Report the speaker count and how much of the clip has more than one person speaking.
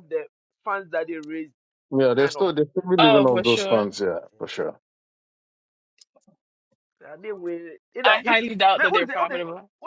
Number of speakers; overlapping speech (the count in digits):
3, about 21%